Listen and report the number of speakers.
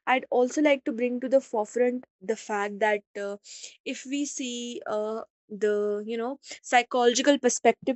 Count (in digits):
1